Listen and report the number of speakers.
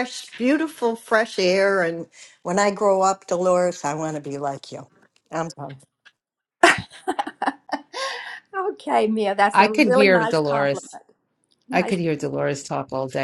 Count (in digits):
3